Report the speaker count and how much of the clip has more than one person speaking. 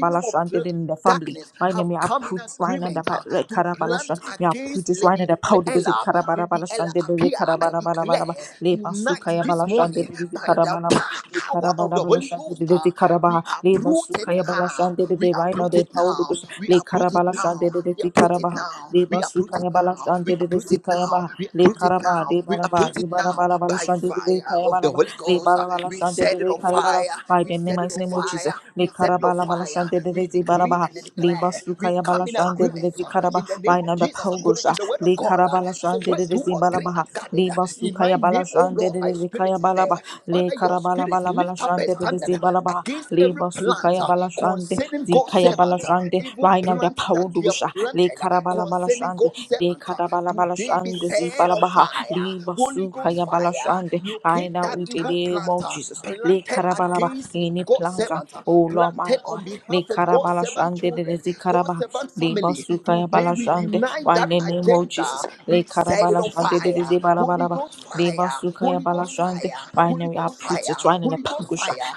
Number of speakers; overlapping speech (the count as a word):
two, about 95%